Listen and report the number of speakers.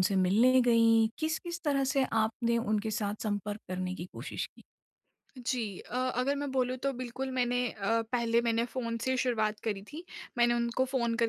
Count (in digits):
2